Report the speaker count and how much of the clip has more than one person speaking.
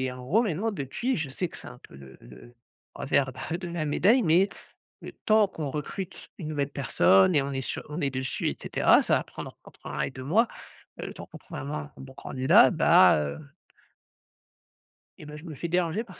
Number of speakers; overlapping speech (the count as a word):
one, no overlap